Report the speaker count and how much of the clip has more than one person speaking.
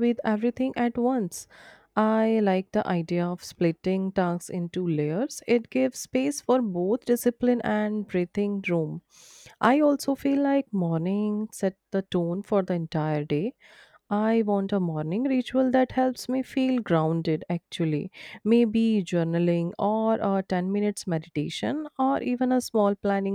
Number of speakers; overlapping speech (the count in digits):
1, no overlap